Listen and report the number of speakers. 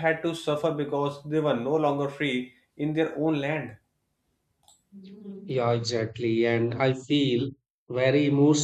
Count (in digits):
2